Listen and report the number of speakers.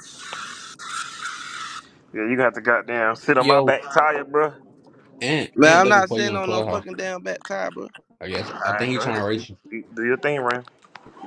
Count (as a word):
three